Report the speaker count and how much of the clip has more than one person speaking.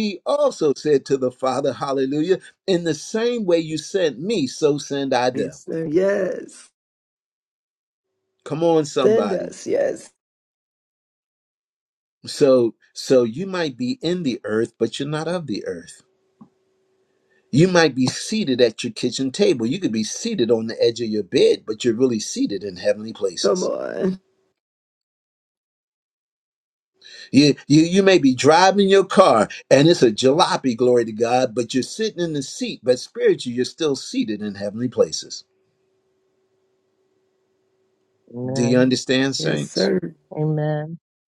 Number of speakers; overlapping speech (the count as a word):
three, about 4%